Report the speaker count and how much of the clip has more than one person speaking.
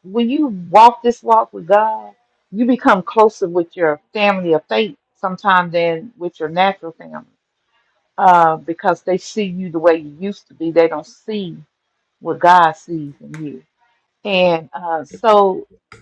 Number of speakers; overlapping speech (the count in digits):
1, no overlap